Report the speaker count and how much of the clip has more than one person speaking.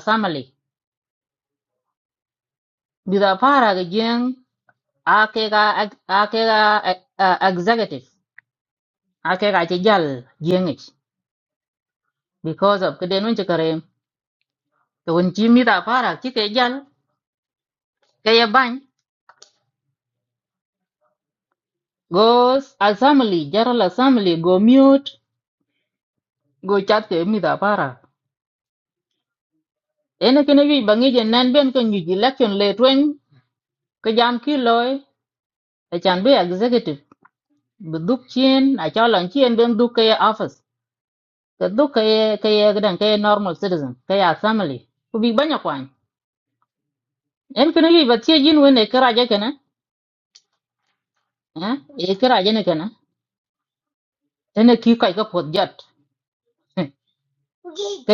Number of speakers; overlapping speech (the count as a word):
one, no overlap